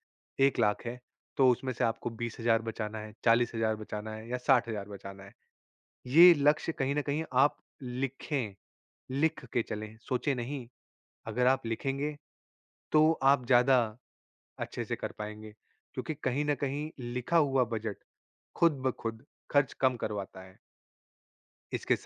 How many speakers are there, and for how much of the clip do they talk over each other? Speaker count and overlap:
one, no overlap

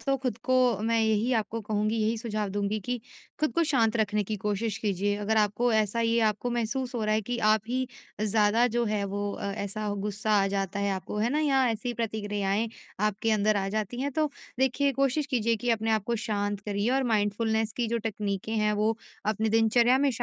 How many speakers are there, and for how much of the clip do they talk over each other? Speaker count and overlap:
one, no overlap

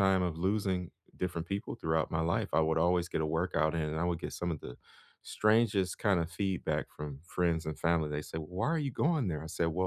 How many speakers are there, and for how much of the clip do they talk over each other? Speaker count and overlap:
one, no overlap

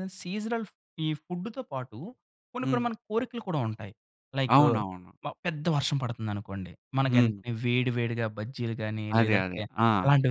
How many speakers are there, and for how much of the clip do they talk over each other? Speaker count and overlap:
two, about 12%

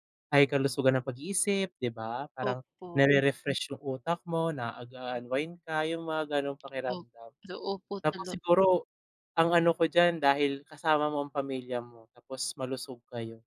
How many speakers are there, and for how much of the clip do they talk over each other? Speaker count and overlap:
two, about 6%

